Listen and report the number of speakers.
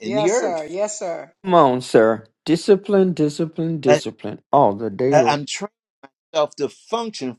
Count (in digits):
3